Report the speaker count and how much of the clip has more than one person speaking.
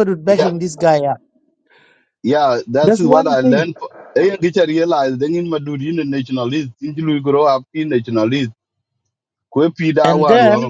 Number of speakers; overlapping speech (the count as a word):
two, about 16%